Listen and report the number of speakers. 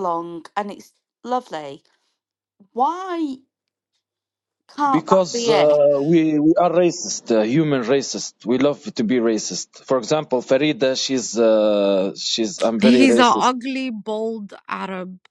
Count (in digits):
3